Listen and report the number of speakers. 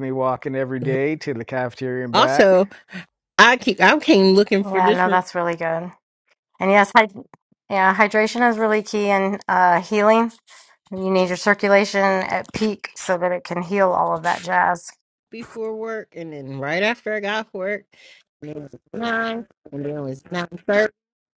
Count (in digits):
3